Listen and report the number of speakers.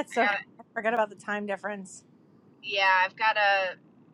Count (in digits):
2